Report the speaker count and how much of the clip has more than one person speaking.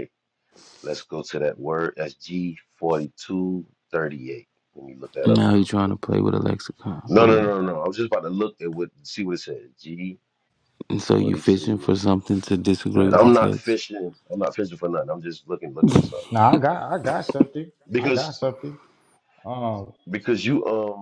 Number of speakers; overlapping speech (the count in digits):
3, about 15%